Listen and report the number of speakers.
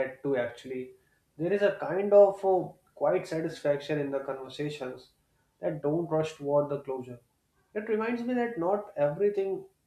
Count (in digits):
1